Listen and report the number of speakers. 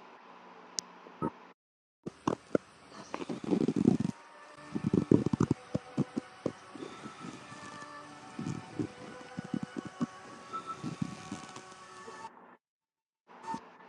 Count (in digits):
0